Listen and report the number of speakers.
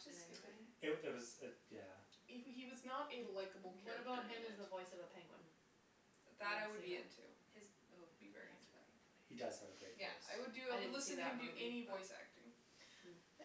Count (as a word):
four